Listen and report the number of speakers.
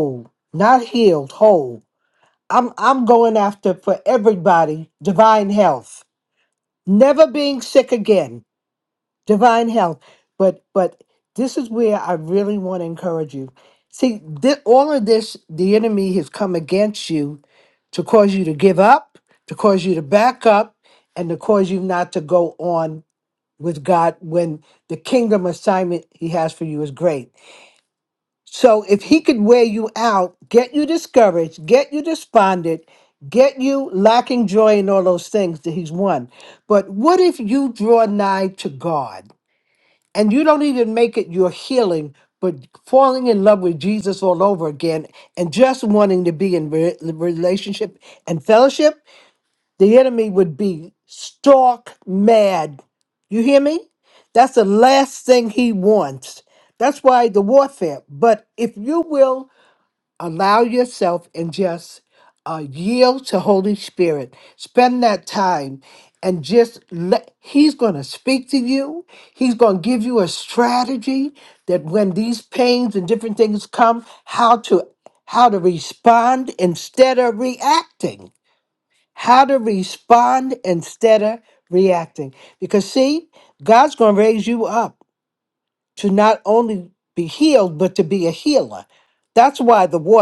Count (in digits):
1